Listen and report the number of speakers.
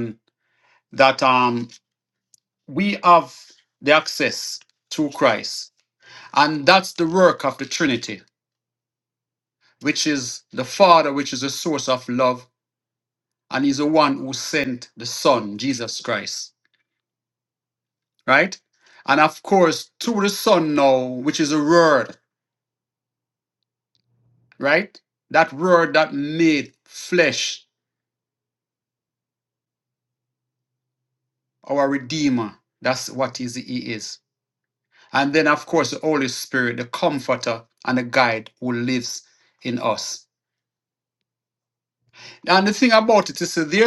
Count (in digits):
1